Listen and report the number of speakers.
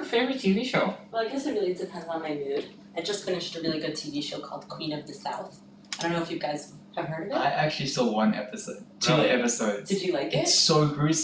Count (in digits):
3